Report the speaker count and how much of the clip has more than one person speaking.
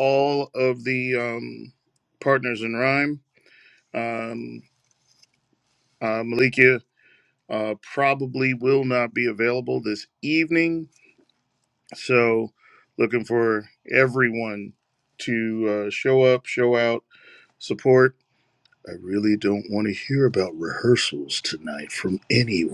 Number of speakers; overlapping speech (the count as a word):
one, no overlap